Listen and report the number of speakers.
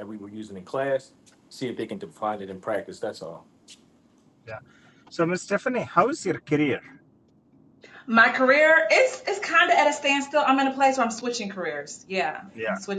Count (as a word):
three